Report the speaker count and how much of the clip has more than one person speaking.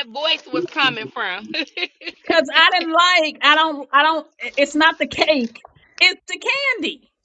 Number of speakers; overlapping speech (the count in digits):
2, no overlap